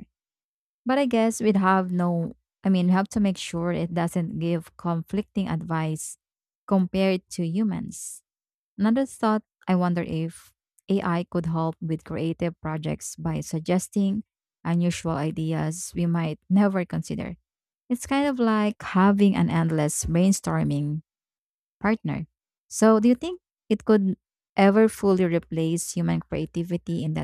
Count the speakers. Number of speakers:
one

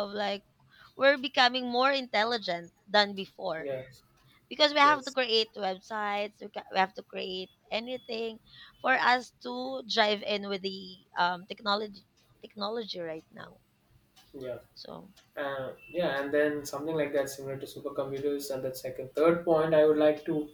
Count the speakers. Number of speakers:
two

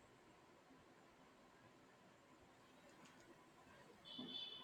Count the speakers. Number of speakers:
zero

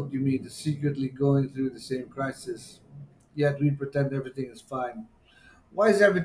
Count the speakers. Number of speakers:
one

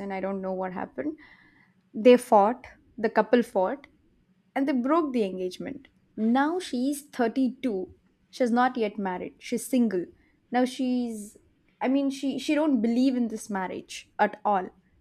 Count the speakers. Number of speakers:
one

